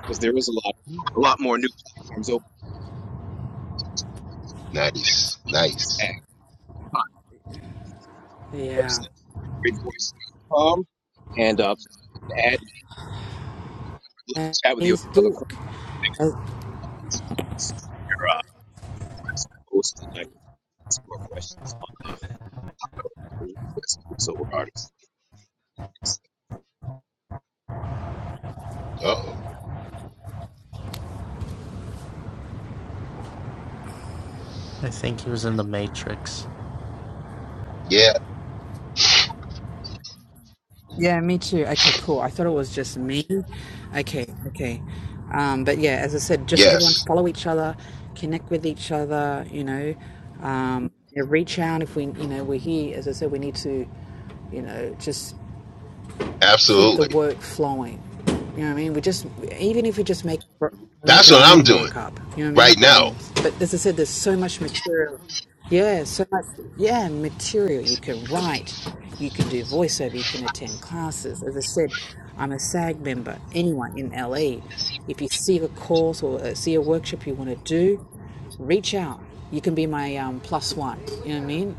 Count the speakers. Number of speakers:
4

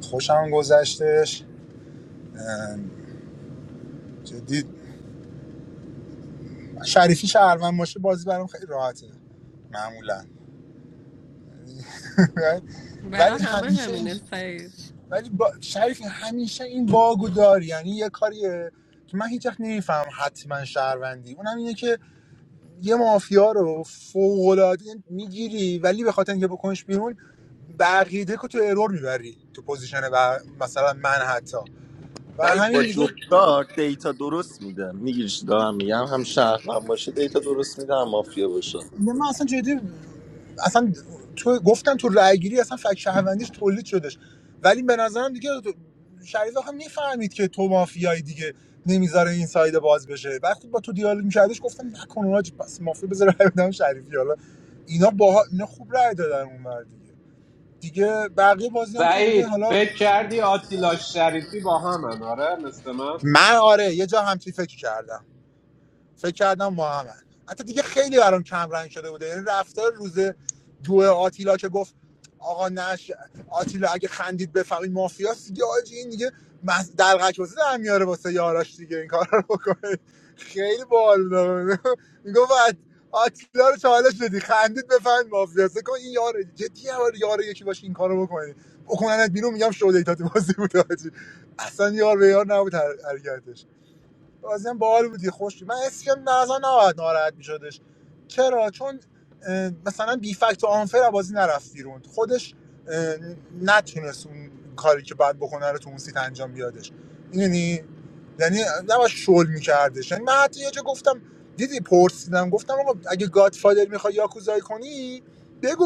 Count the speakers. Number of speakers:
4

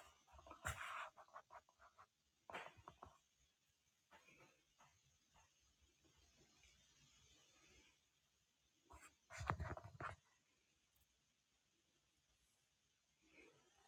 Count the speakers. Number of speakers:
0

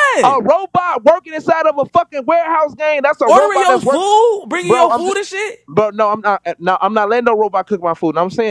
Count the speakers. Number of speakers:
2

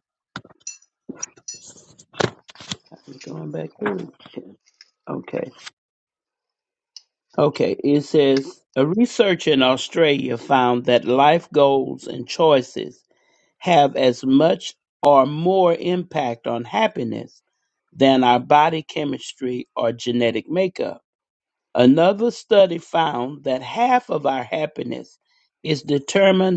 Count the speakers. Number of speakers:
1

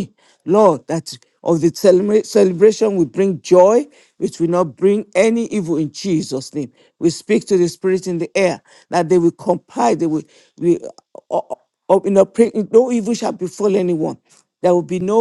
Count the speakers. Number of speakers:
1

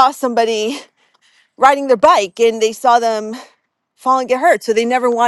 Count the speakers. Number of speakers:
1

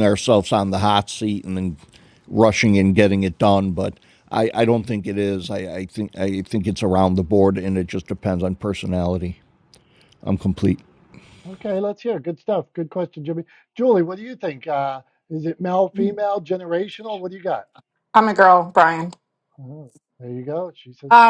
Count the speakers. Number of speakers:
3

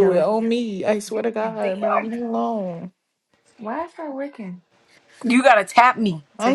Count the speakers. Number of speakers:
3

